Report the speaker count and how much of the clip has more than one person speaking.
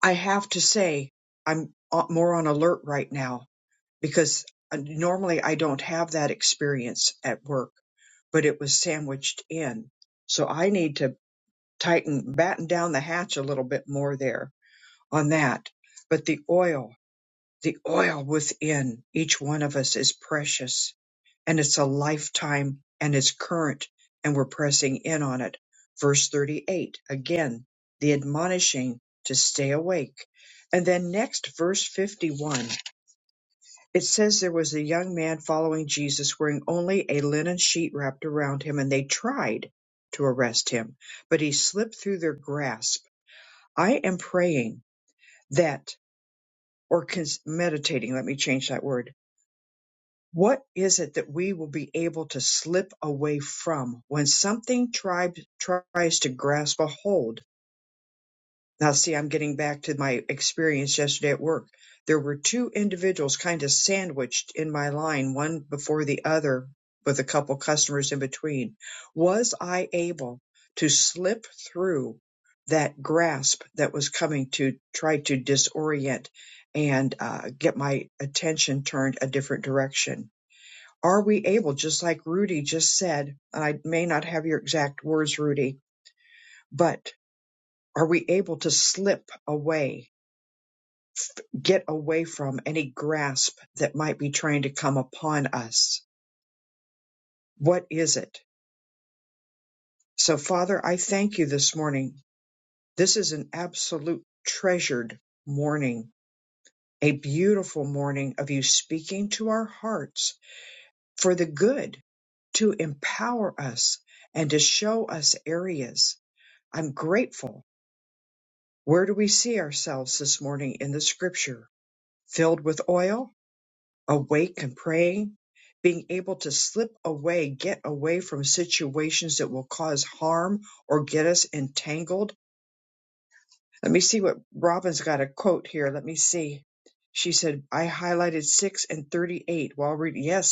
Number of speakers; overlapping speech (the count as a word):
one, no overlap